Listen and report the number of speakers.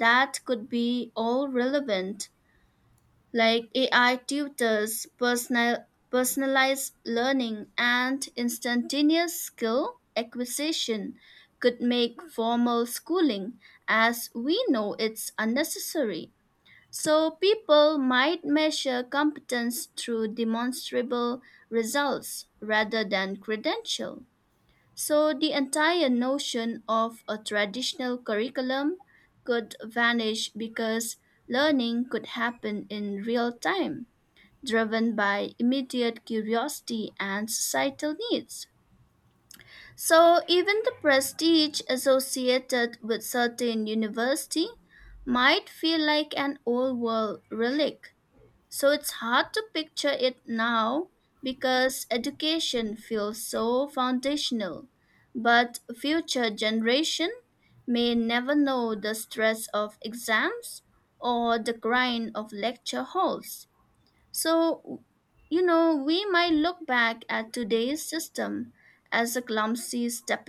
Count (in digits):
1